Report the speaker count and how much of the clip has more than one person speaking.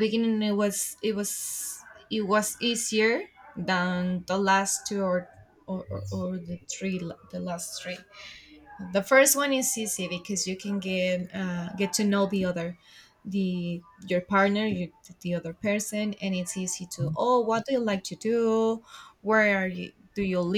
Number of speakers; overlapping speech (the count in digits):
1, no overlap